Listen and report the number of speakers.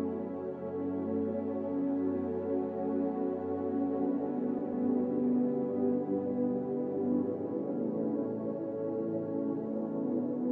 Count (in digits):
0